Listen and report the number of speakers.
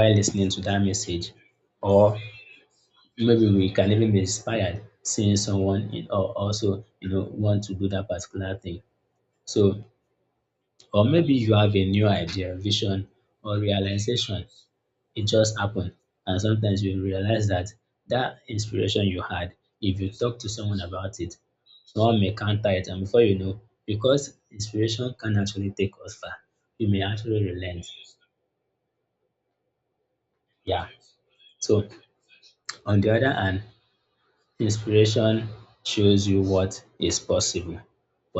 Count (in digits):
1